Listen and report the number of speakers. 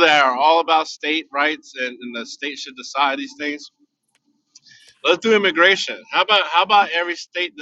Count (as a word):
one